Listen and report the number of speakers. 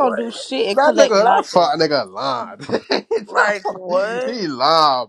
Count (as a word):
three